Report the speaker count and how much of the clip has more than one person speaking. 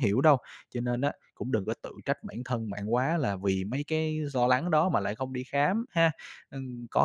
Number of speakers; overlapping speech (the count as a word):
one, no overlap